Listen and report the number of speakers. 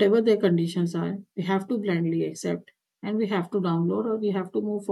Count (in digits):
1